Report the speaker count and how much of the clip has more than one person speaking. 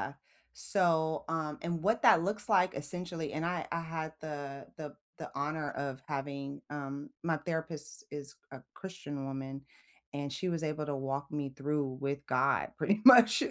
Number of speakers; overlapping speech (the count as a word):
one, no overlap